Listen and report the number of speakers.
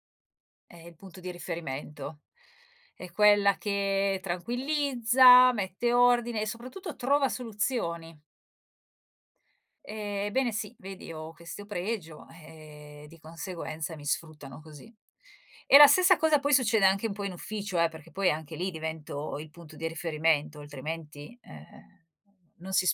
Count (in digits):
1